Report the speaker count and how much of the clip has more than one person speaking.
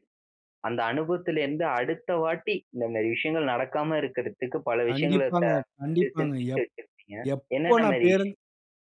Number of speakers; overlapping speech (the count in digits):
2, about 21%